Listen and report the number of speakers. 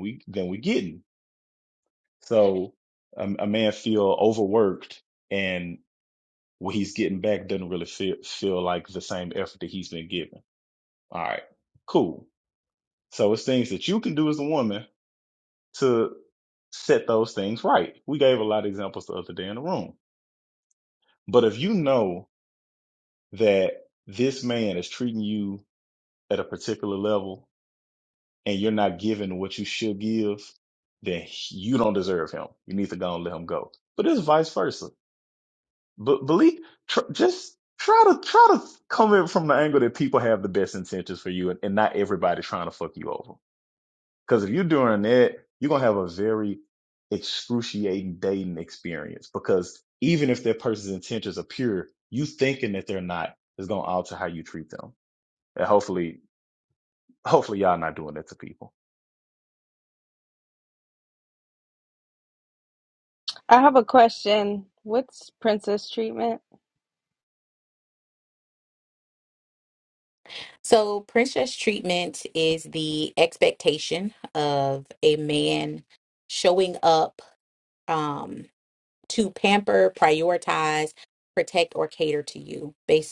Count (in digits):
3